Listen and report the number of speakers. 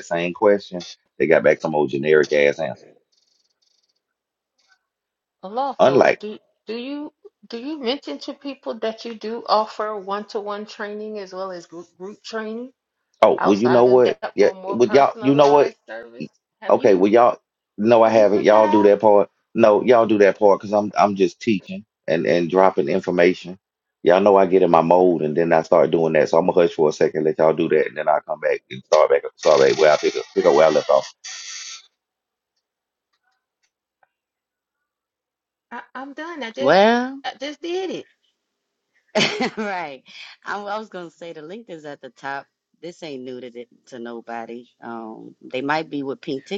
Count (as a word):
three